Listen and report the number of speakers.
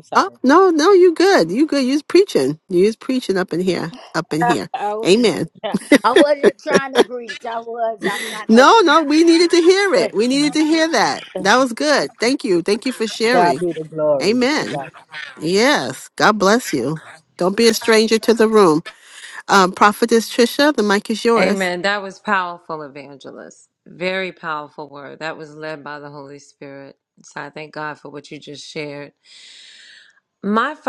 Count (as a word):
three